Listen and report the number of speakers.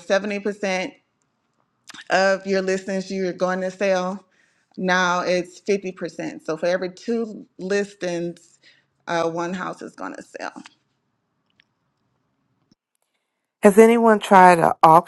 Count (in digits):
2